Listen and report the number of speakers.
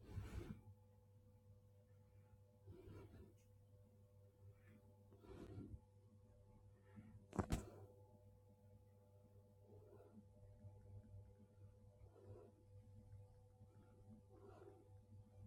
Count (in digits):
0